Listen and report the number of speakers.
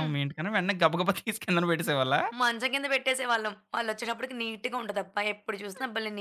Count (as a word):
two